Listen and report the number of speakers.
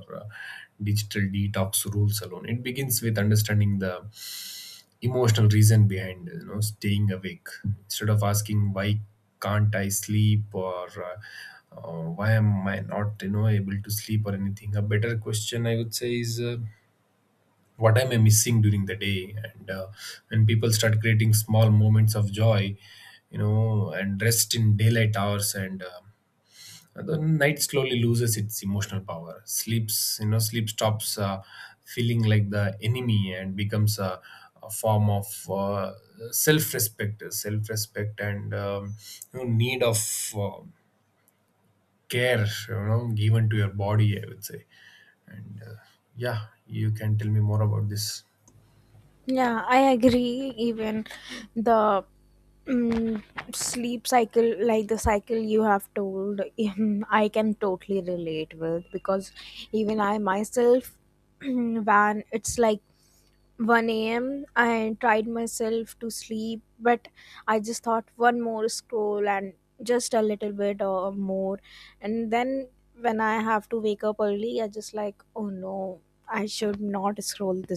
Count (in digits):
2